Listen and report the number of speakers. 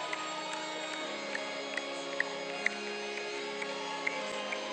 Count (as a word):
zero